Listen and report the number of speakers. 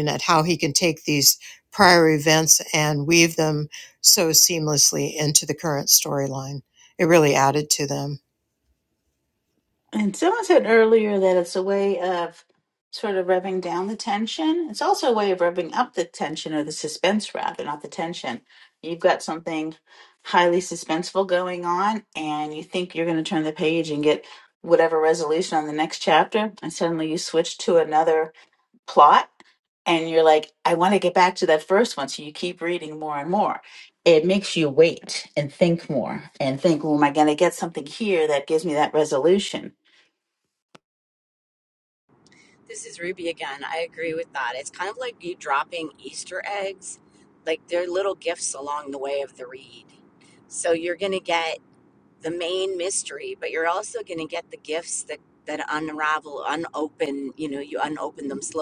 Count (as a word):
three